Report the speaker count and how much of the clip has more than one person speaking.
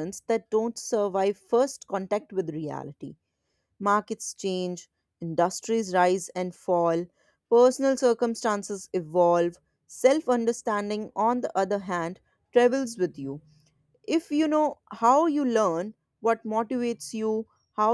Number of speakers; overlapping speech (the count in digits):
1, no overlap